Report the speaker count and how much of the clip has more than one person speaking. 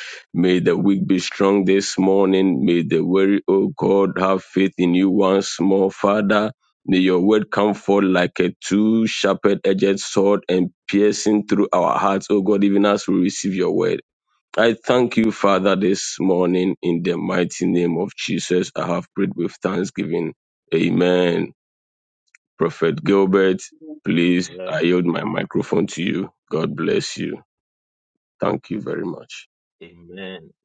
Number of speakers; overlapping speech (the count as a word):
two, about 1%